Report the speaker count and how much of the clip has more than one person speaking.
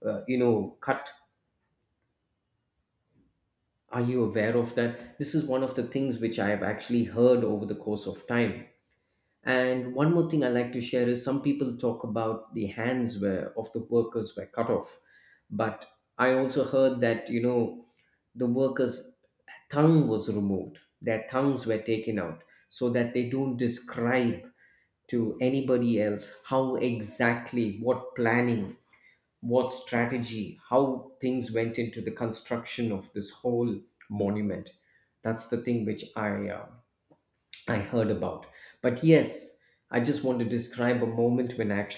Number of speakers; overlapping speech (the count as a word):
one, no overlap